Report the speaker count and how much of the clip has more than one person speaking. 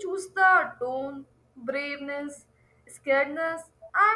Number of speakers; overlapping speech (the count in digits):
1, no overlap